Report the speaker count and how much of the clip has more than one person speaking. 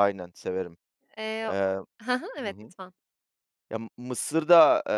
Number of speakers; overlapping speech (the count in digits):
2, about 6%